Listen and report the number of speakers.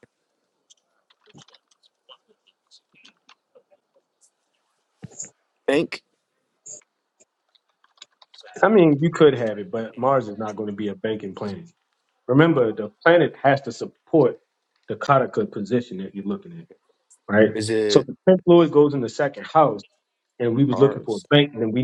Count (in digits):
2